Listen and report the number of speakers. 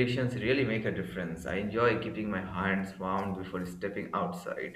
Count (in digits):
1